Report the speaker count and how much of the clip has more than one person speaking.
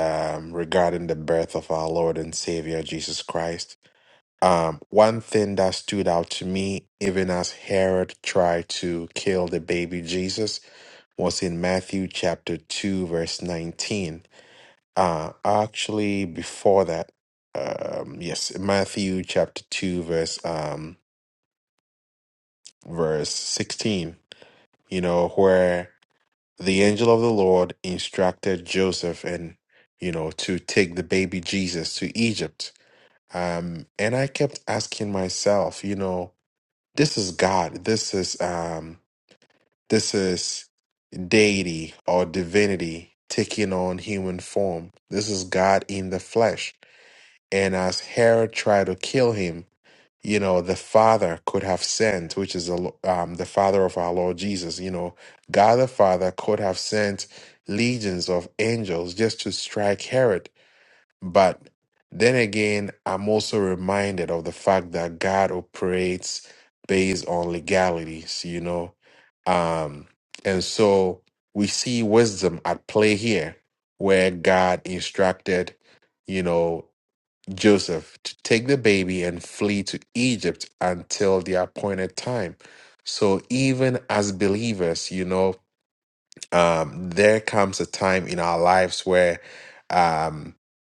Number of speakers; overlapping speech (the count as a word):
one, no overlap